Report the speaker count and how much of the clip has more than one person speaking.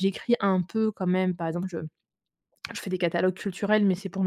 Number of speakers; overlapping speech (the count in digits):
1, no overlap